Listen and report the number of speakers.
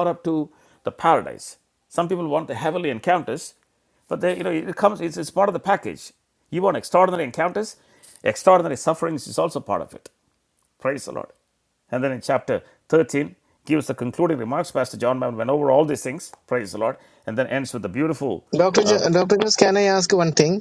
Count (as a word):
two